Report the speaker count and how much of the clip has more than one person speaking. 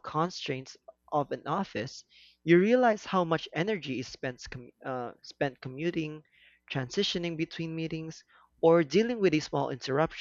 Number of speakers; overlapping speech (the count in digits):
1, no overlap